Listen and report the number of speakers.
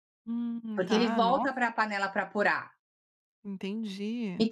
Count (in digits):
2